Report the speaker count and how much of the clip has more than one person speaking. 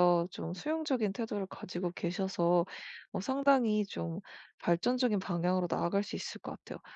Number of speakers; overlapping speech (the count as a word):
one, no overlap